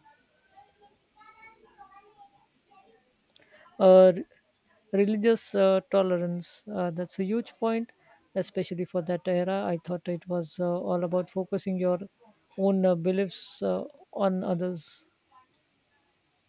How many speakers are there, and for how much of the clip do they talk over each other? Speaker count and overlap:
1, no overlap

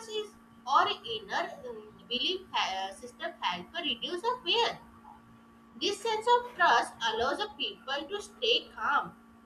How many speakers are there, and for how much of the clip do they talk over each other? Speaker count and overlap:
1, no overlap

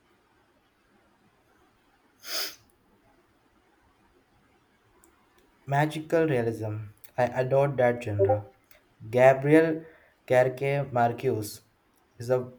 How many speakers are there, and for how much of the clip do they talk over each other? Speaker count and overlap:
1, no overlap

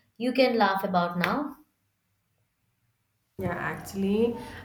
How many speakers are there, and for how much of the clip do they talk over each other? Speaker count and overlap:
2, no overlap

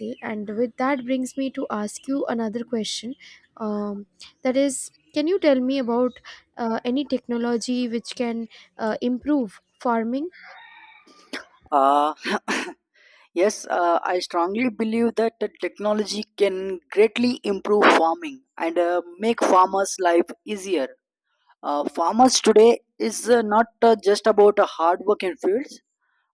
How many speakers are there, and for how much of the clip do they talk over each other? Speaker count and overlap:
2, no overlap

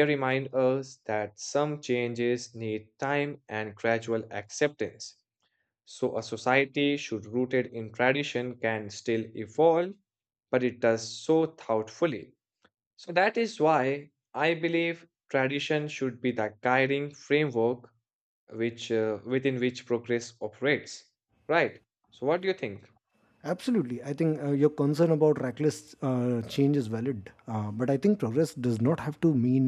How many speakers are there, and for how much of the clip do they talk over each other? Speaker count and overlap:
2, no overlap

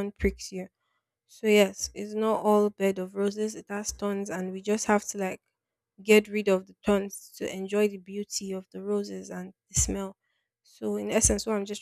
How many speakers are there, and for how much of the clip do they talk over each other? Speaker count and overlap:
1, no overlap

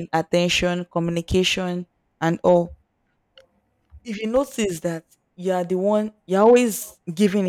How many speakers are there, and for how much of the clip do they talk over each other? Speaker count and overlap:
1, no overlap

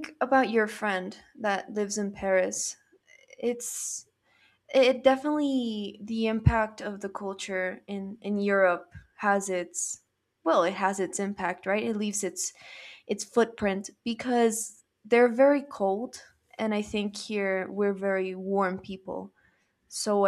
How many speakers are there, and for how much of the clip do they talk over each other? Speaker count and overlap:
1, no overlap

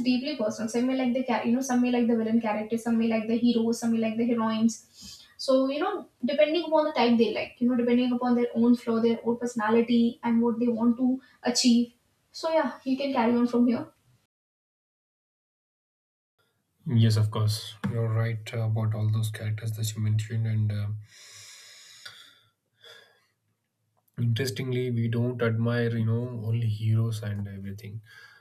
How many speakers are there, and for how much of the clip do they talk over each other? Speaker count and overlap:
2, no overlap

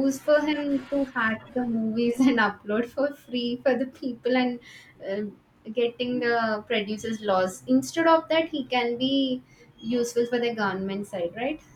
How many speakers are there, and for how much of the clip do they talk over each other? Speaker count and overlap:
1, no overlap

